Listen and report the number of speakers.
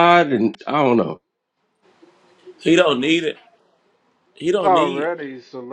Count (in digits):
3